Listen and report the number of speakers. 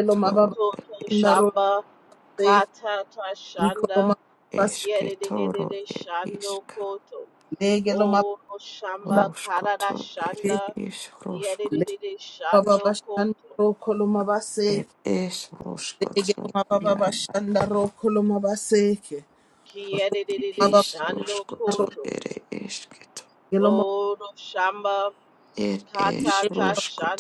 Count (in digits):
3